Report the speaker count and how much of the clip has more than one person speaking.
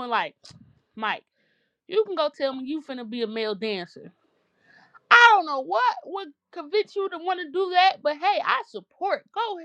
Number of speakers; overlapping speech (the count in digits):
1, no overlap